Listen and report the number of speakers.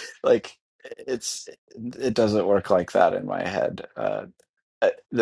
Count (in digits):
1